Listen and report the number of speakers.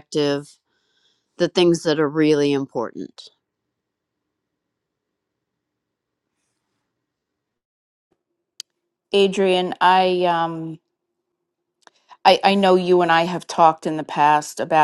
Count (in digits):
2